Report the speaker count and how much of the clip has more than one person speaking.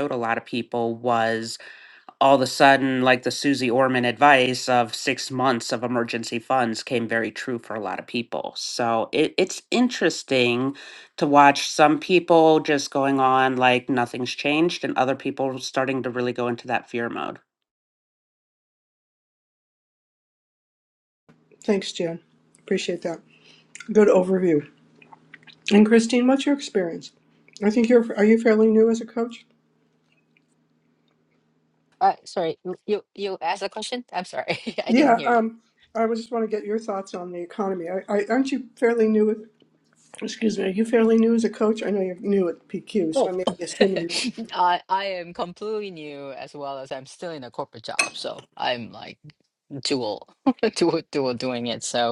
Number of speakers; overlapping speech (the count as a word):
three, about 1%